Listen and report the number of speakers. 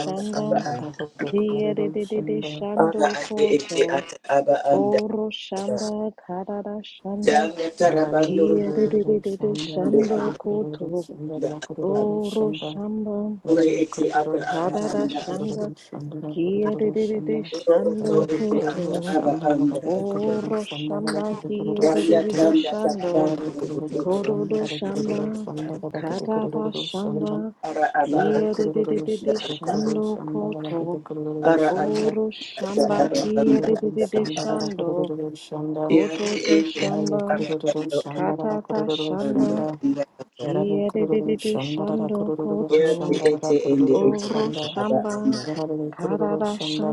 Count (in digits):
3